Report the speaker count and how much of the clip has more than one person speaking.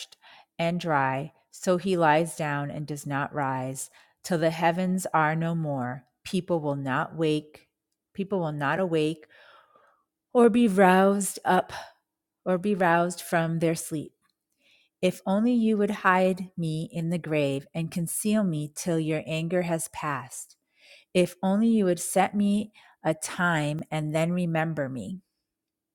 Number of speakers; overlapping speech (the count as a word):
one, no overlap